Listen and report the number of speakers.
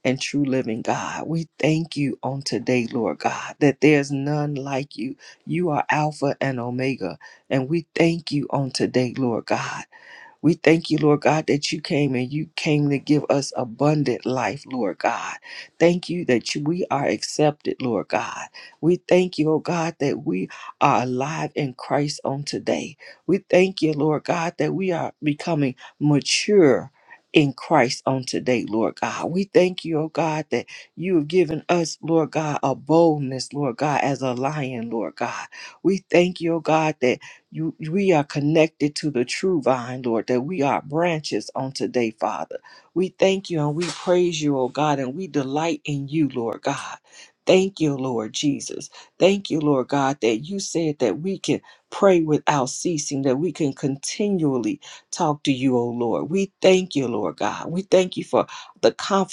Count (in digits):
1